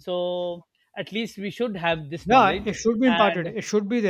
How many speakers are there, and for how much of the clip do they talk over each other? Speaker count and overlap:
2, about 22%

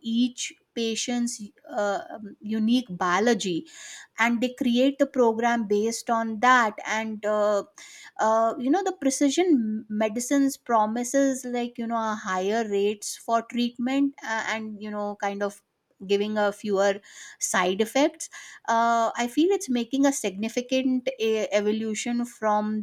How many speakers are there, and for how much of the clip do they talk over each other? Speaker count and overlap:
1, no overlap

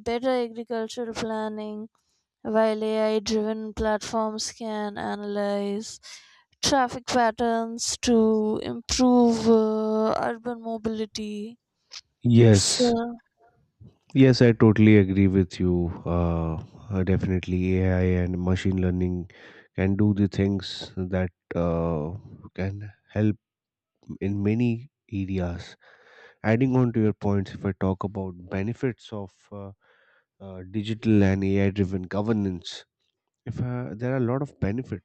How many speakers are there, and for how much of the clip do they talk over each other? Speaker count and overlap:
2, about 1%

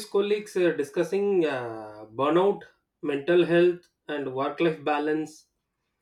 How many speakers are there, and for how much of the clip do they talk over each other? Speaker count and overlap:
1, no overlap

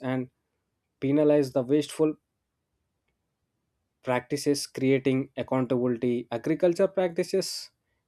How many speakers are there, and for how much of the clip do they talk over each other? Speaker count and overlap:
1, no overlap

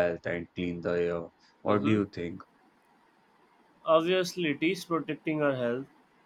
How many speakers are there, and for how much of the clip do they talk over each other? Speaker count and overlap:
2, about 5%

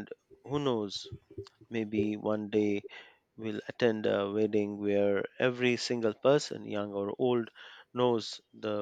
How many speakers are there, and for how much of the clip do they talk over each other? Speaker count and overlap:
1, no overlap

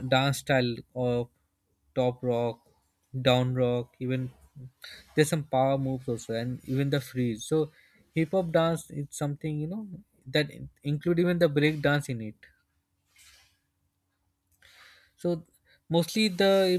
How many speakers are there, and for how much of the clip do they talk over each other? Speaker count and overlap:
1, no overlap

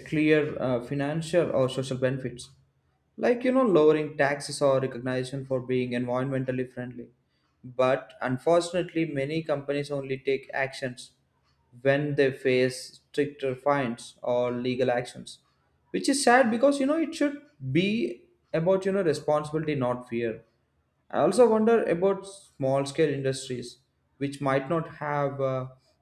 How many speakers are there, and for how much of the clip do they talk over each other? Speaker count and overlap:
1, no overlap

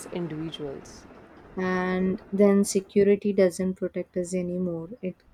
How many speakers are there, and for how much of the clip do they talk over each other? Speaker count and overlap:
2, no overlap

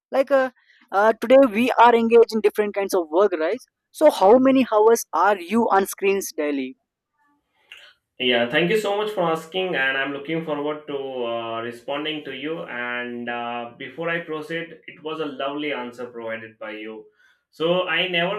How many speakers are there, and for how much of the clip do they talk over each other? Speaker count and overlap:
2, no overlap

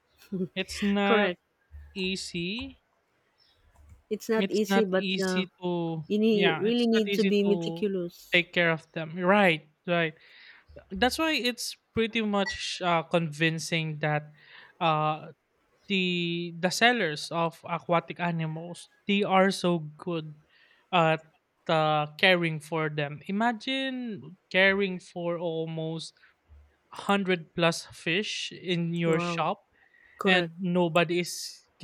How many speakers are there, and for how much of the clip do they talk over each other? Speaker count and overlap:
2, about 12%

